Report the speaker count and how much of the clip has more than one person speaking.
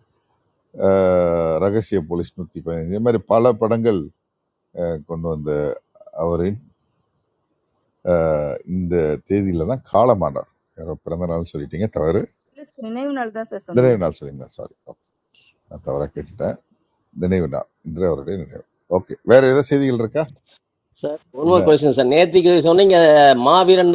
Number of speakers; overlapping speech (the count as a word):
three, about 2%